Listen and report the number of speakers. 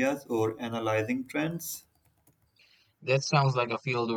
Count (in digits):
2